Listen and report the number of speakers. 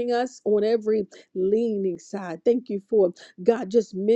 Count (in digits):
1